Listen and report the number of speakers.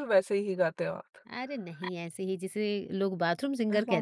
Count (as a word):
two